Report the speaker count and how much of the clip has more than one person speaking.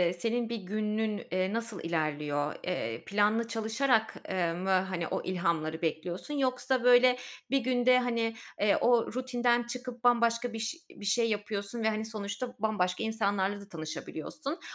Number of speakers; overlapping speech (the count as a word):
one, no overlap